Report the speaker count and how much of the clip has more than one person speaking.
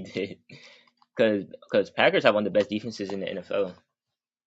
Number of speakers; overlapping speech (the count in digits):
1, no overlap